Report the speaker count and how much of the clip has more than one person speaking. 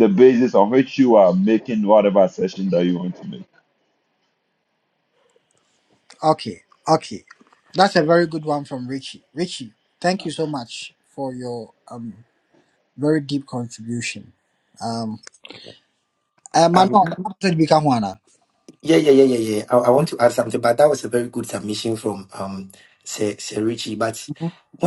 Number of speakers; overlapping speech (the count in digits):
3, no overlap